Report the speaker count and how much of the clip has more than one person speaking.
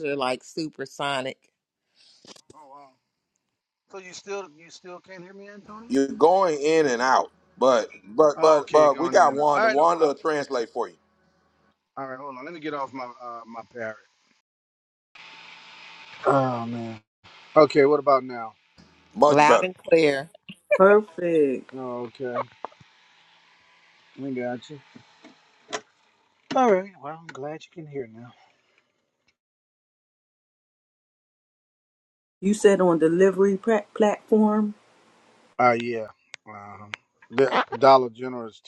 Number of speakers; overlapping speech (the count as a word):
four, about 6%